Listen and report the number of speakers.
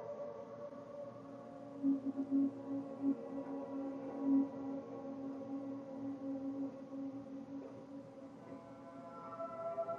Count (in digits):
0